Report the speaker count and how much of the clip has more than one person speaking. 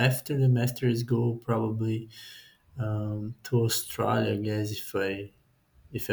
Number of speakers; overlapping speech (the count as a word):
one, no overlap